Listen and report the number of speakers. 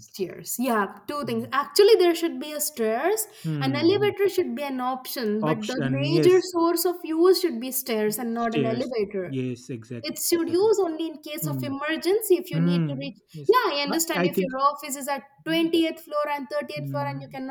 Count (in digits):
2